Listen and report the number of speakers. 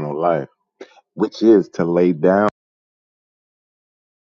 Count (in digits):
1